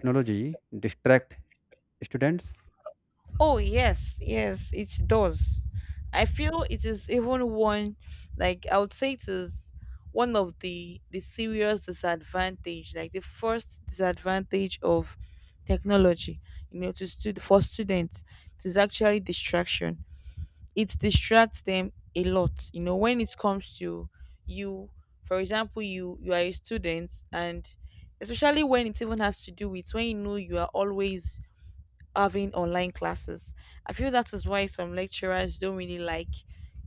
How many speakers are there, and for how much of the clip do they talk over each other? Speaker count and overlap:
two, no overlap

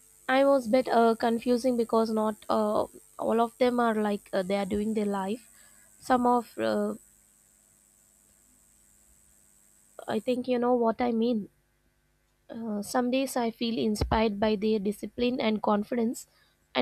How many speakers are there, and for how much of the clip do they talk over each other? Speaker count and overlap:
one, no overlap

